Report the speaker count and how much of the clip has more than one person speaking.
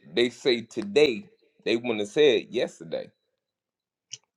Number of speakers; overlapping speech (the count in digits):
1, no overlap